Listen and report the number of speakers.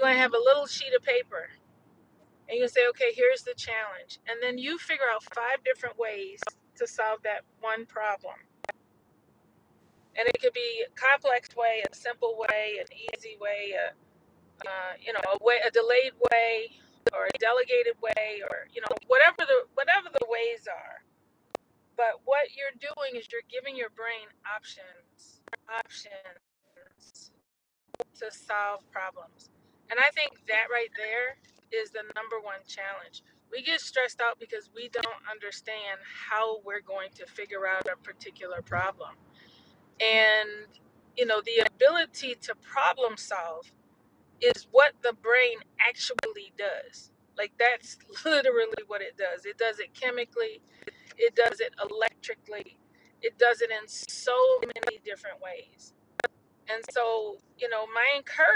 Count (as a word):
one